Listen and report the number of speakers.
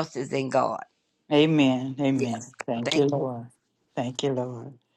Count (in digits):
2